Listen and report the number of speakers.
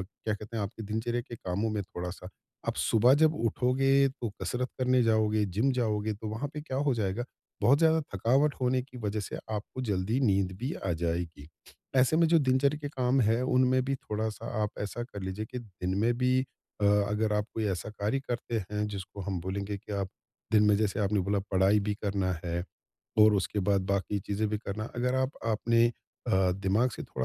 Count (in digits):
1